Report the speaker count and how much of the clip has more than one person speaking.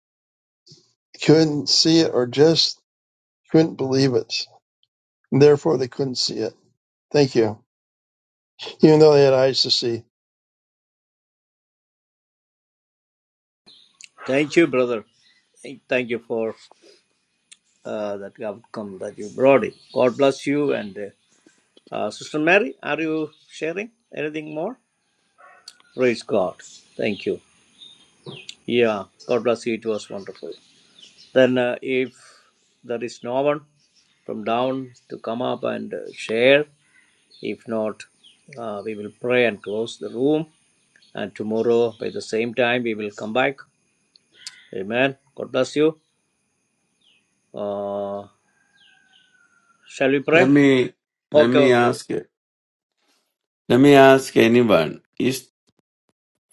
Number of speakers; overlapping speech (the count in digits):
3, about 1%